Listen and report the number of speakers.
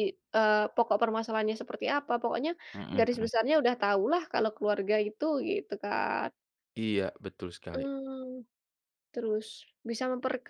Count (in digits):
2